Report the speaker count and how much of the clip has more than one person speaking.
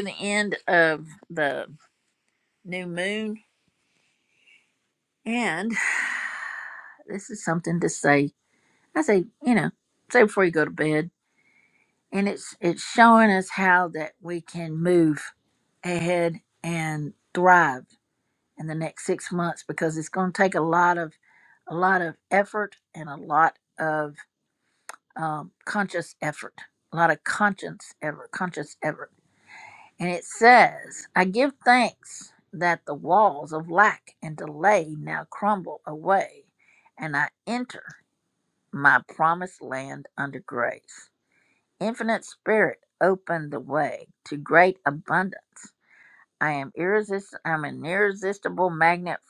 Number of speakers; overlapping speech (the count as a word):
one, no overlap